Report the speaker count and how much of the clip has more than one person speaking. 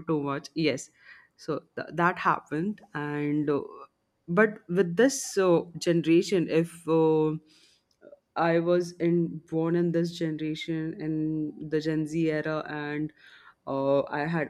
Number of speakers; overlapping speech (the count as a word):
one, no overlap